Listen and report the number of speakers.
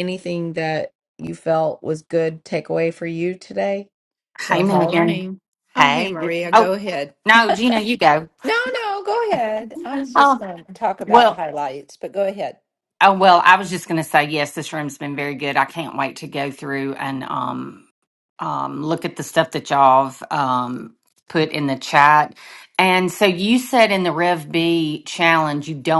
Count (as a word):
three